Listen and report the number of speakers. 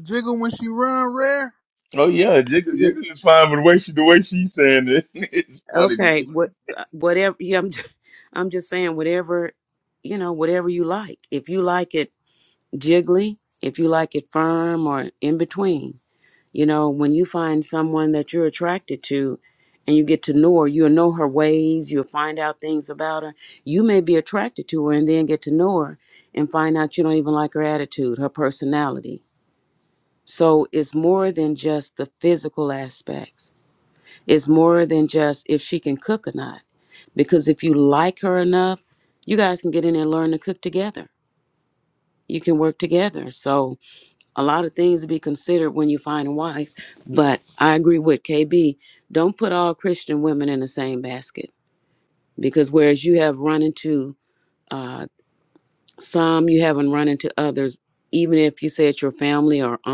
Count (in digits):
3